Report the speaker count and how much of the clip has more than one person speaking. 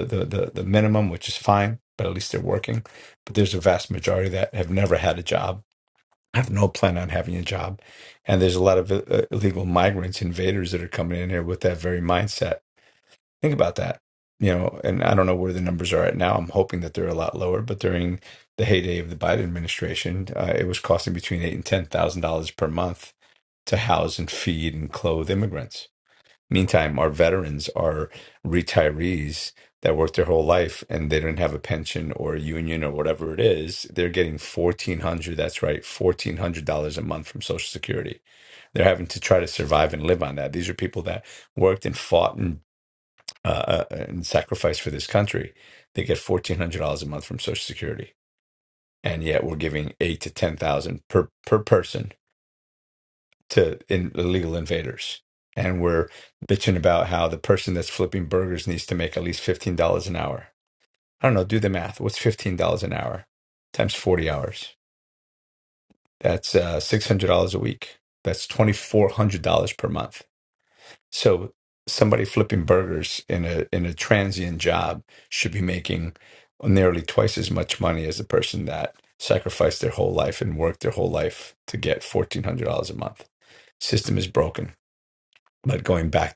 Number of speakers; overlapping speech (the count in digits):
1, no overlap